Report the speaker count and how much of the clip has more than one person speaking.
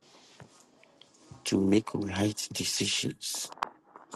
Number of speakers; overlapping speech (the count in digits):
1, no overlap